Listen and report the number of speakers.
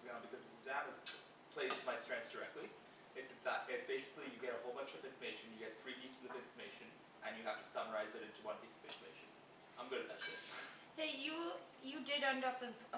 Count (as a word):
two